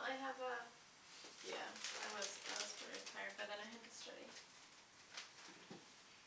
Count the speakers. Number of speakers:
one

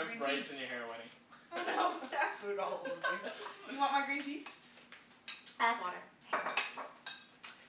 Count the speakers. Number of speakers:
three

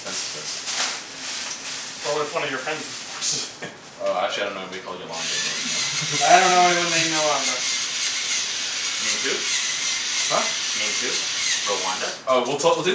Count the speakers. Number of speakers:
four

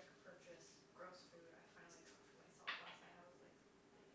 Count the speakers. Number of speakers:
one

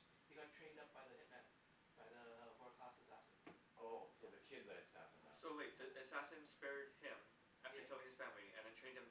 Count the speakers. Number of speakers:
three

